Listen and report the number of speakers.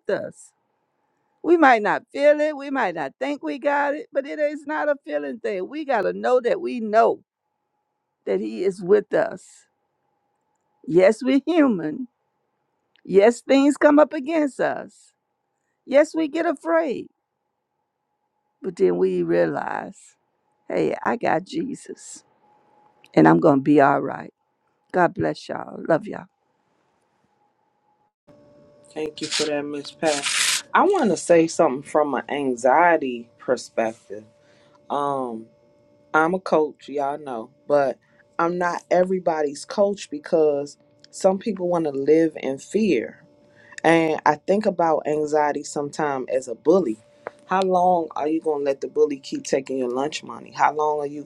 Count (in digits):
2